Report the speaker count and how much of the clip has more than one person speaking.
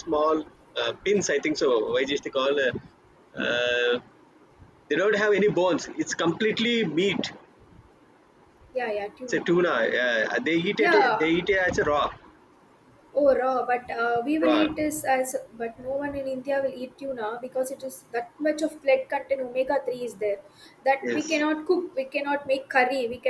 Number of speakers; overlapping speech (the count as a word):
two, about 6%